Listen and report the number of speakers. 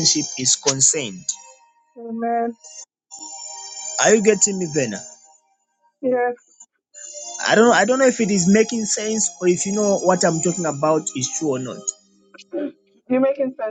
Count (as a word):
two